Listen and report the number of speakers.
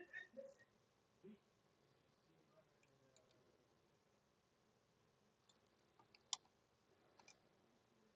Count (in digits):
0